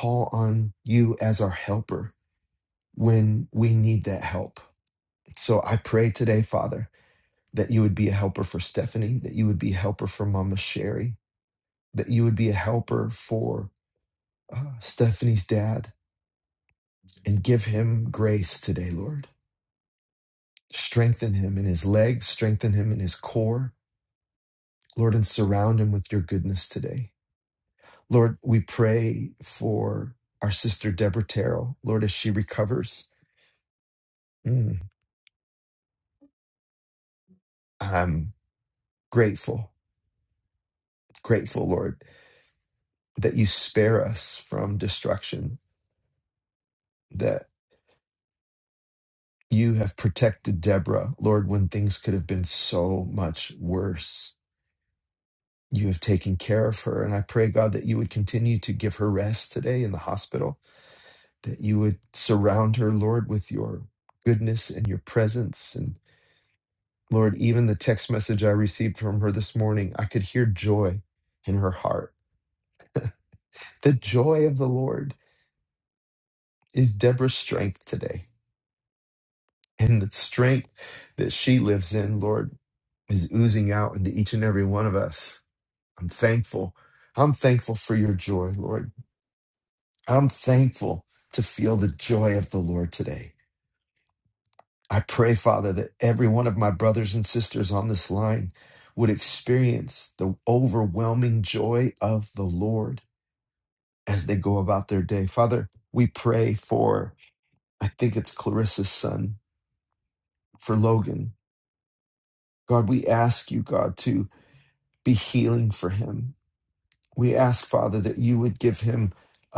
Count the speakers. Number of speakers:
1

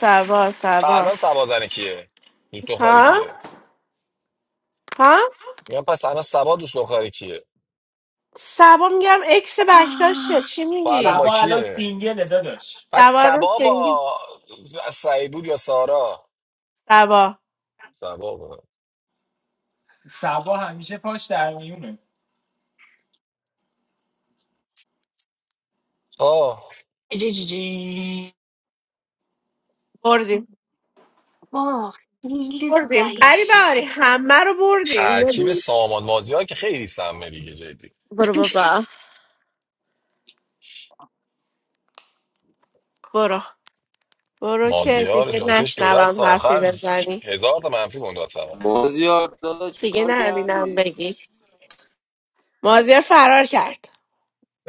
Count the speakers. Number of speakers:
5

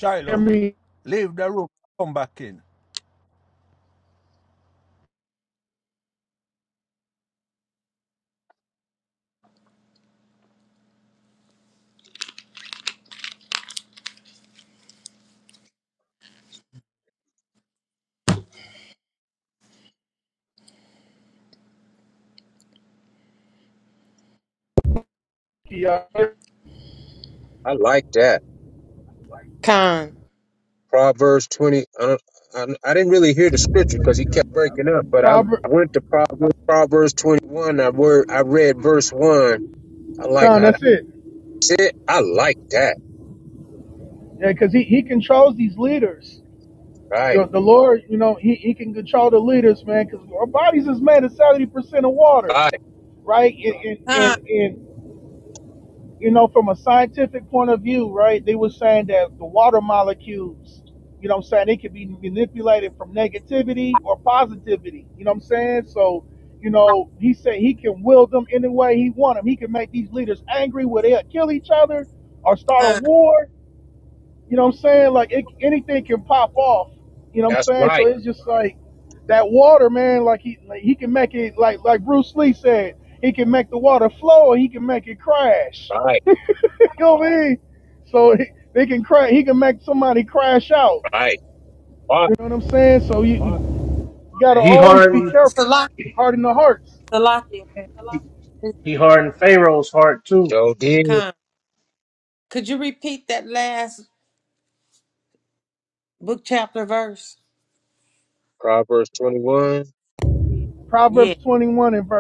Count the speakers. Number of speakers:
5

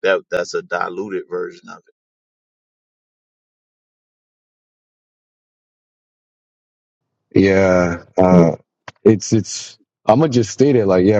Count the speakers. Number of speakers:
2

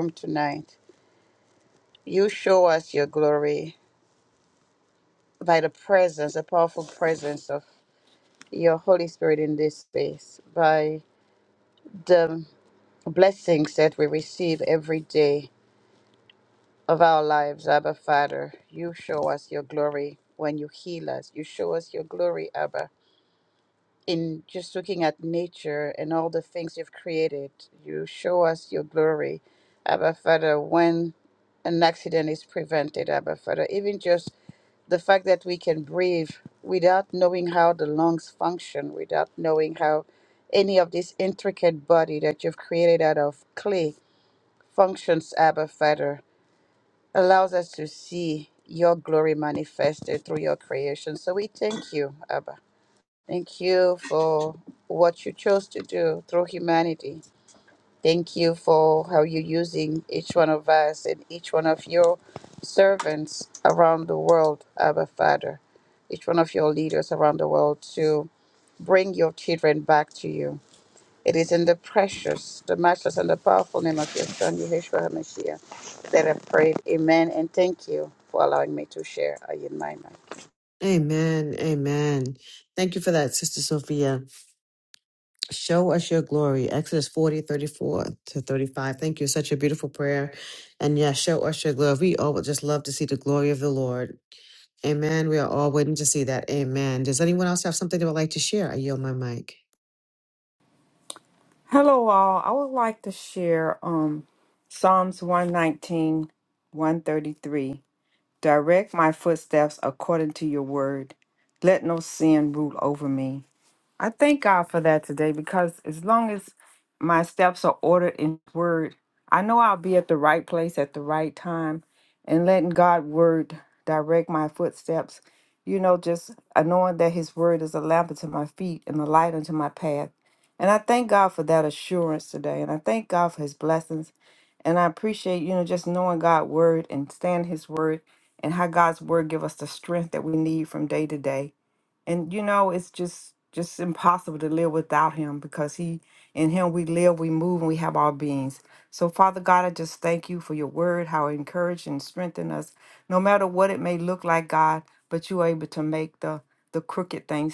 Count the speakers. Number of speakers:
3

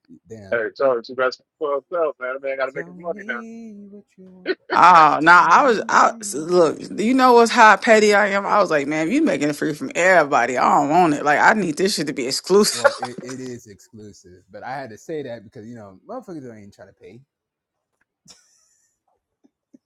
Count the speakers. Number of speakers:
3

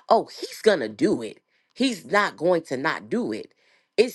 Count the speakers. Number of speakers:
1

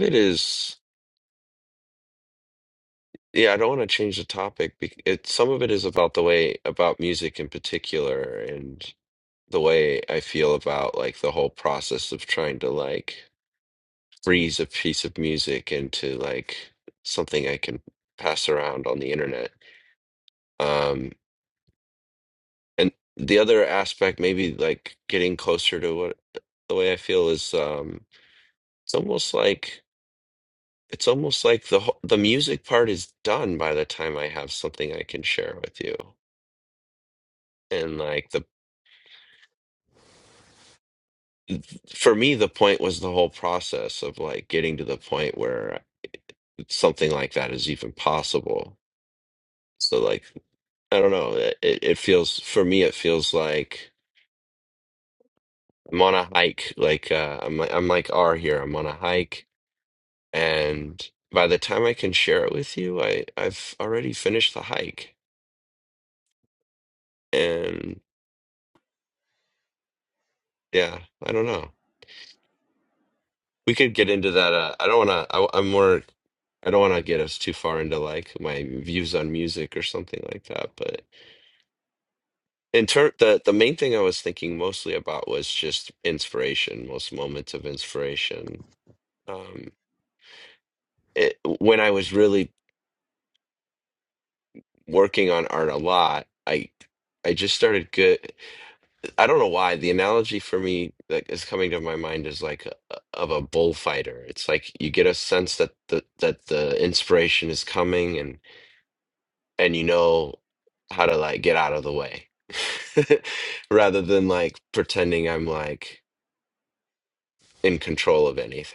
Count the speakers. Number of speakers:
1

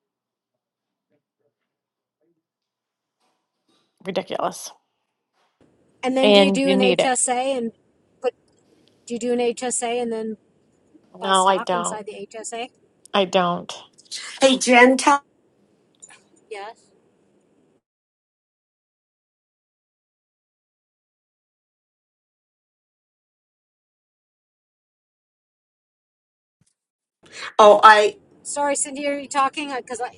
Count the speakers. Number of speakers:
3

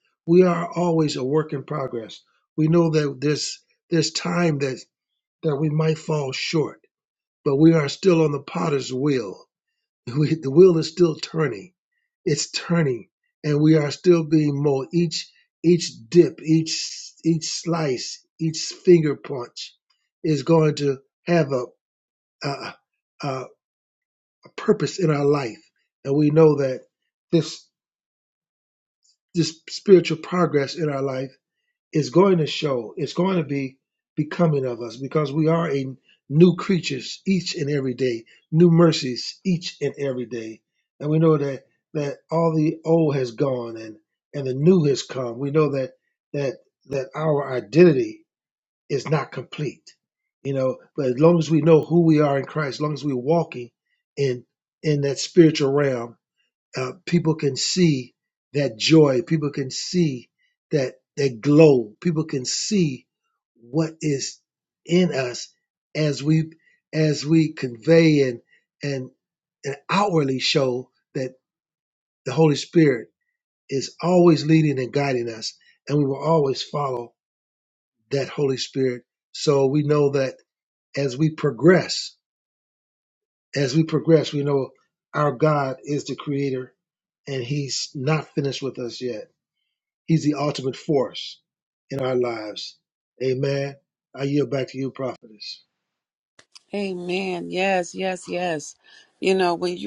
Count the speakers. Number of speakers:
2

